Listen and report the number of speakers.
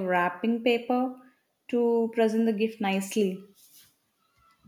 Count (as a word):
one